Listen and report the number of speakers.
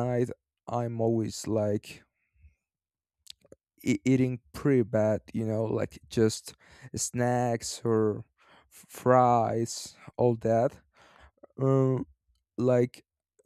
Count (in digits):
1